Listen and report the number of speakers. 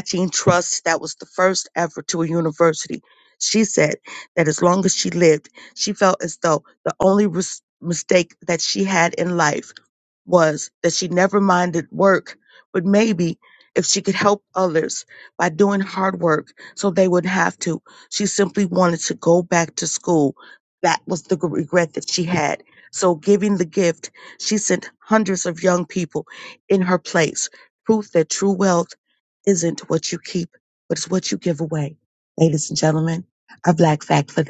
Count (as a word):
one